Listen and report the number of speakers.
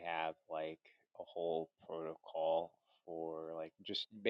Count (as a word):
one